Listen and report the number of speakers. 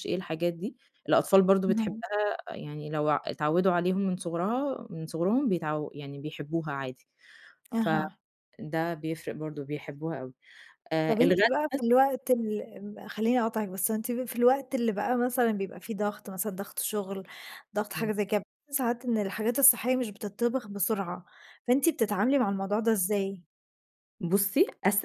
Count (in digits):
2